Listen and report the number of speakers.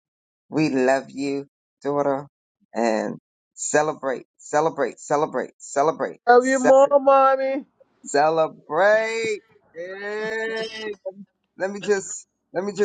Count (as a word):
two